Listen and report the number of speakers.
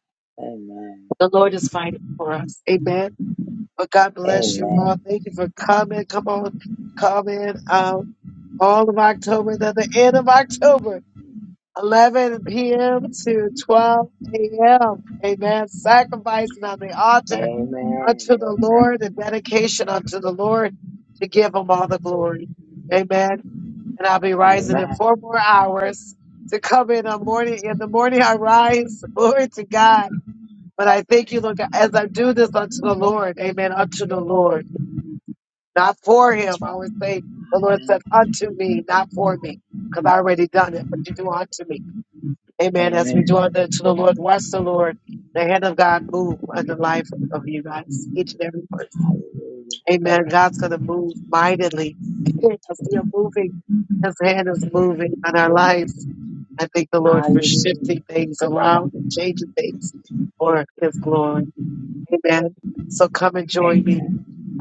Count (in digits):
2